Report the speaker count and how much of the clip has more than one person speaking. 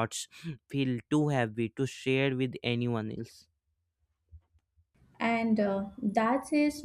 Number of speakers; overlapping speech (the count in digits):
2, no overlap